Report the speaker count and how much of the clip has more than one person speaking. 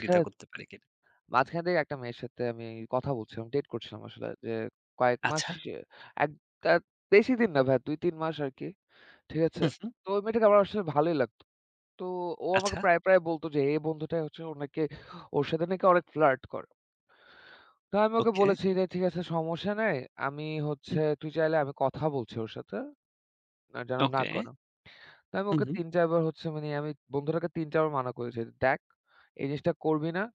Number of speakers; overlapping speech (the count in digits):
2, about 7%